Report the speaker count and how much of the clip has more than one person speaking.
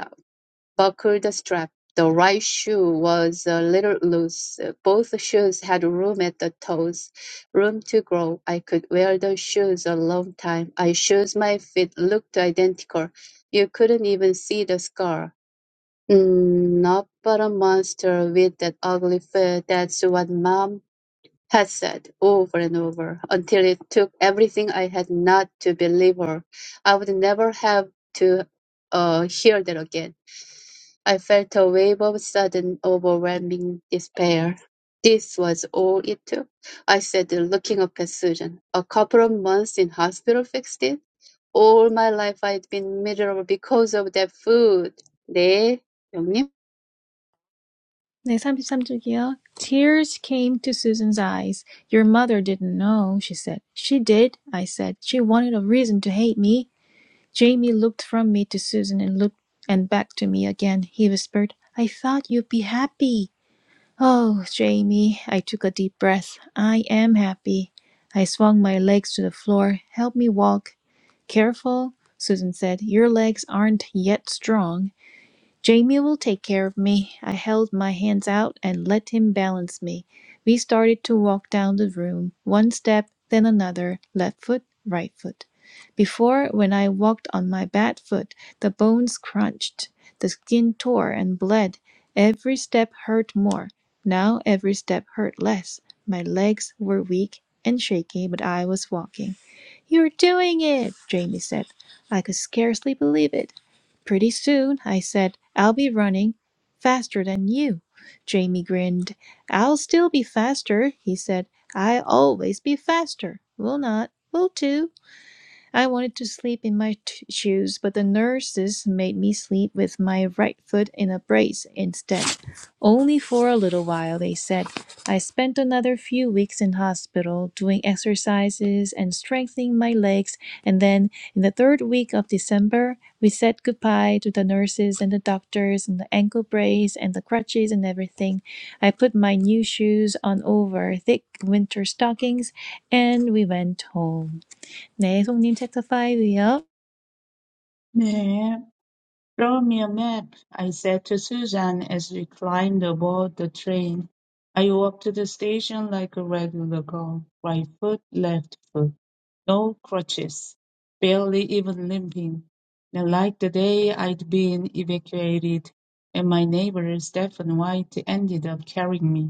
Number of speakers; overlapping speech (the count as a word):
three, no overlap